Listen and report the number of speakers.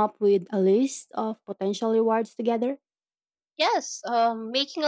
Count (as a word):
two